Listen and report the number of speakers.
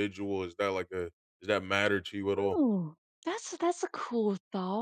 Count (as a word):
two